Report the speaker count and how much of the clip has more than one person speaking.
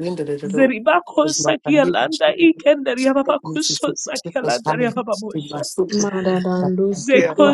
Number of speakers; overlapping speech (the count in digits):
3, about 44%